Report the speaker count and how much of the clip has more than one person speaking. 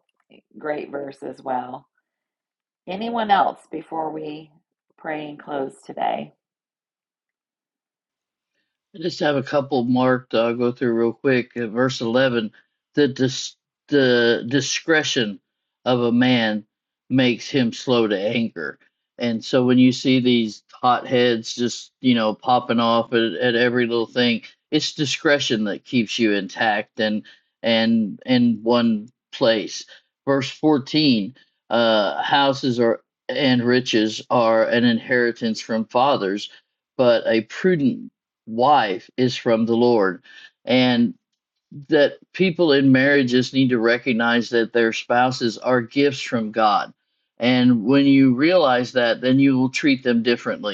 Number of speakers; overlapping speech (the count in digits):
2, no overlap